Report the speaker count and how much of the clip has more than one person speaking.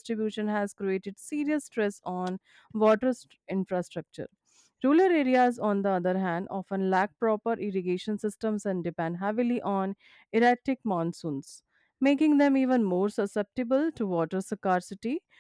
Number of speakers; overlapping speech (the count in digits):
1, no overlap